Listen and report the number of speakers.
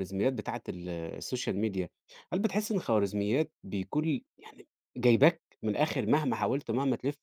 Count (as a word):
one